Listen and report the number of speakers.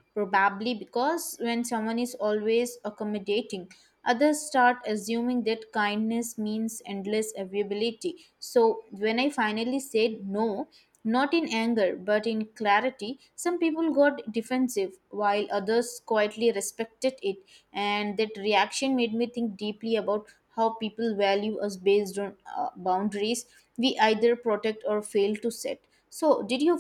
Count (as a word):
one